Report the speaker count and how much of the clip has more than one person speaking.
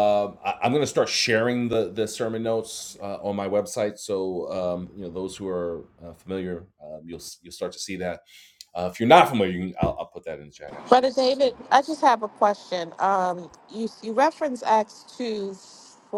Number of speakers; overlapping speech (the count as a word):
two, under 1%